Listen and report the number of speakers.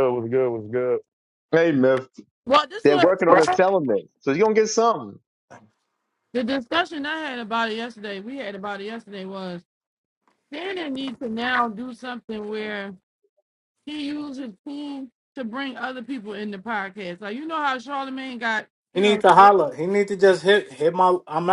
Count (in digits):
4